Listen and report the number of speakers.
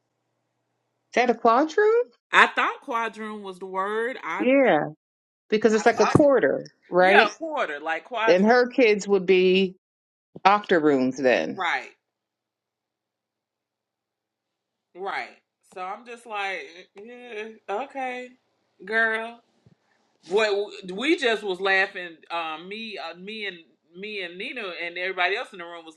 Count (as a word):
two